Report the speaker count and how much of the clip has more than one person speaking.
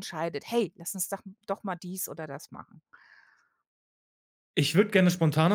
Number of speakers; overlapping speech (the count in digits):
2, no overlap